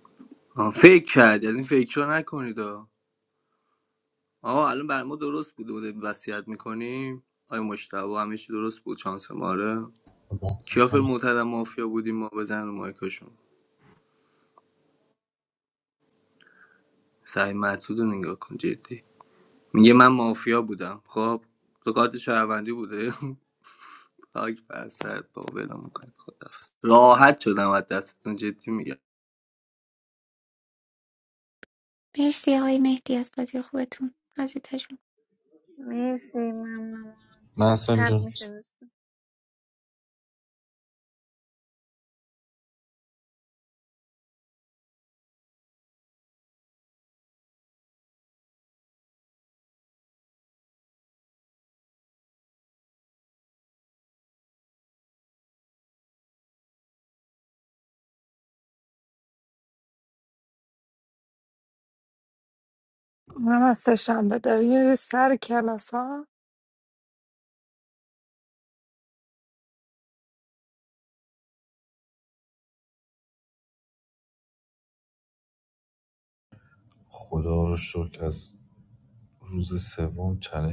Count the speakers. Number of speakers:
5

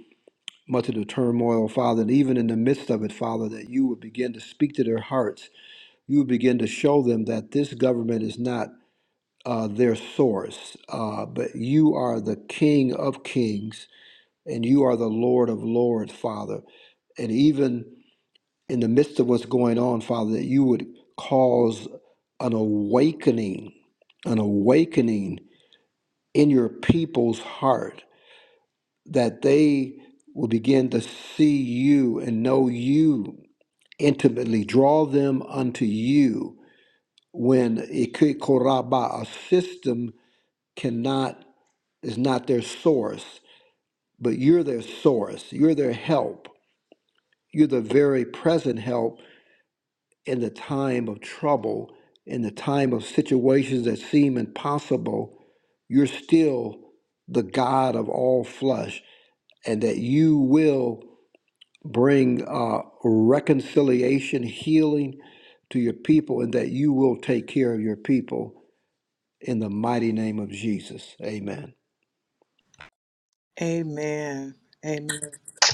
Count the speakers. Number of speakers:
2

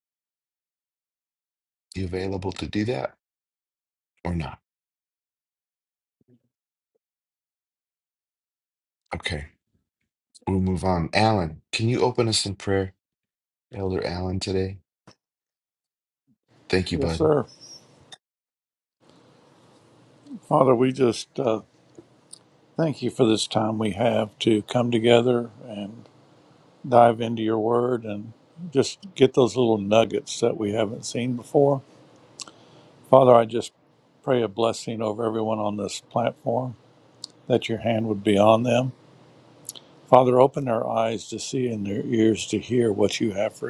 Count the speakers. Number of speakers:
2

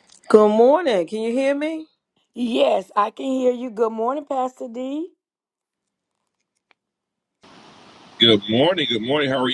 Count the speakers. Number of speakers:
3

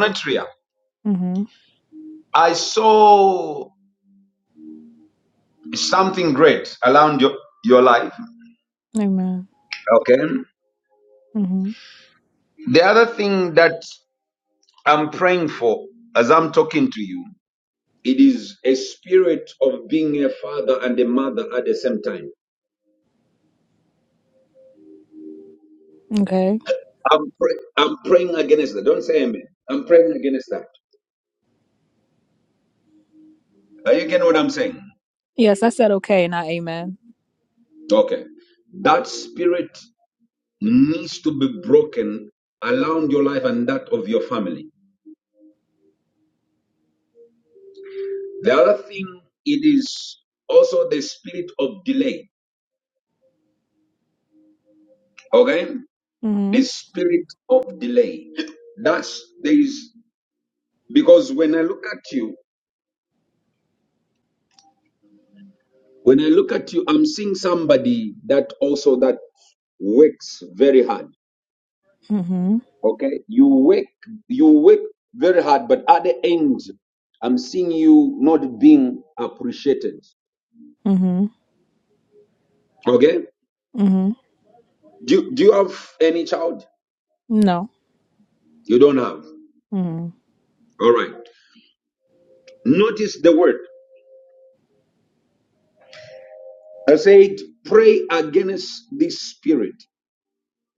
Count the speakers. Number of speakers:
2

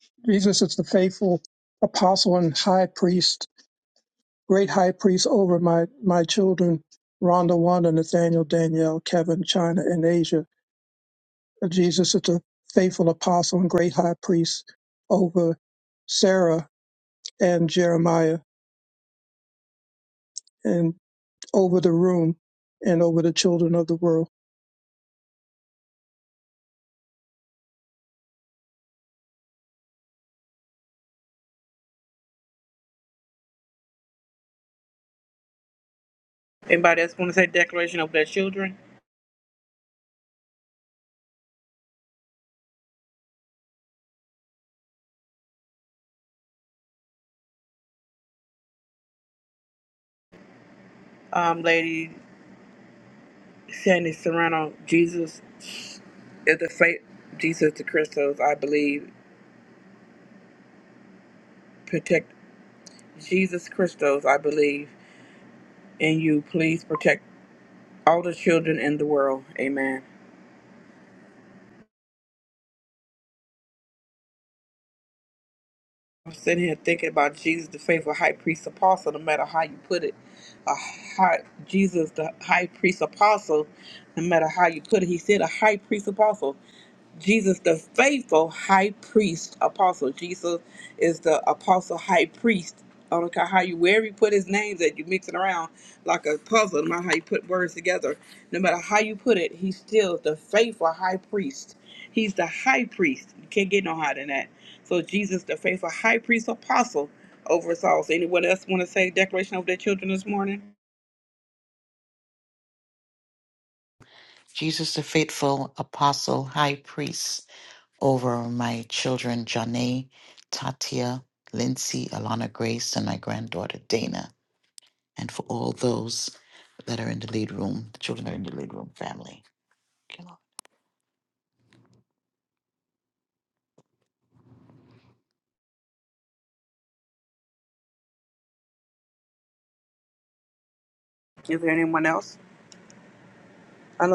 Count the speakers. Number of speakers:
3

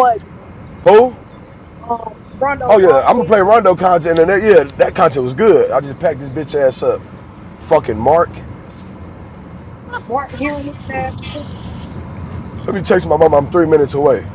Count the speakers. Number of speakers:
2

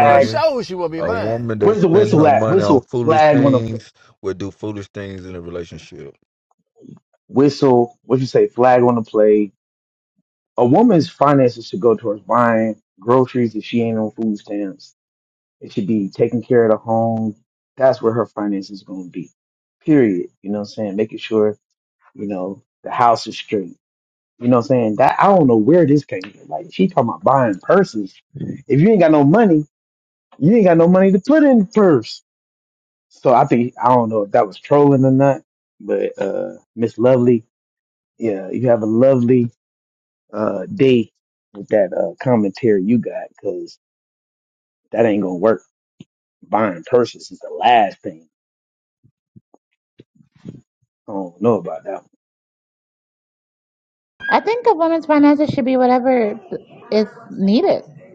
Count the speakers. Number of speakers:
4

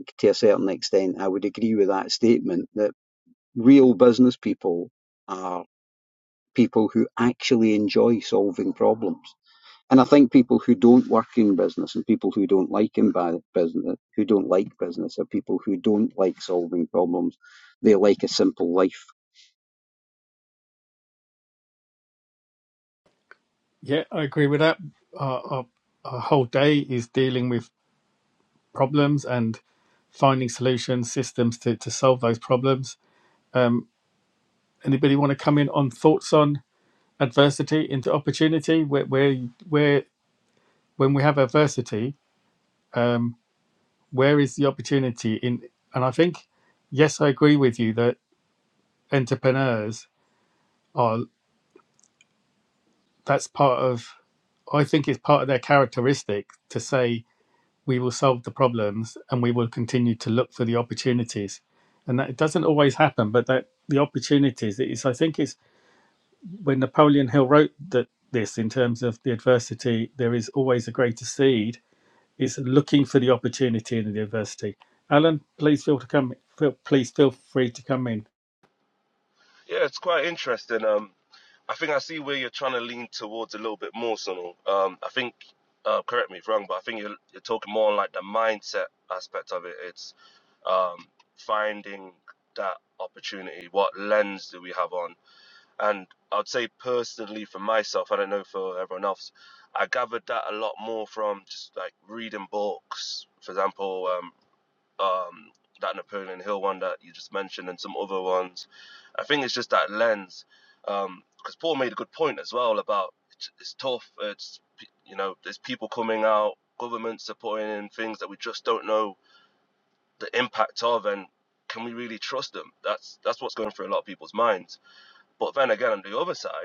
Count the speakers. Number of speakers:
3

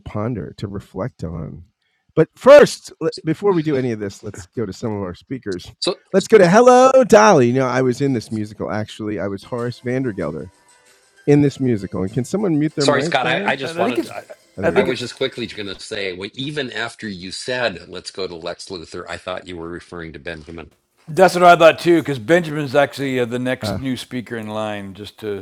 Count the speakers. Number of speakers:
3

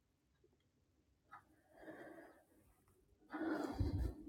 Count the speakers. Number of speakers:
0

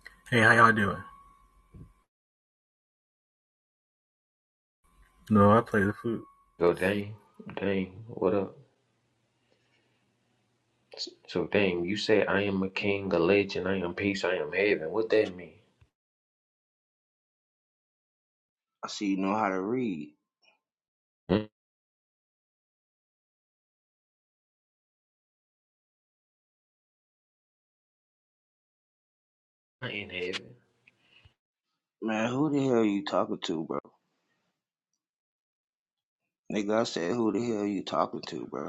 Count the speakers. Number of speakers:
3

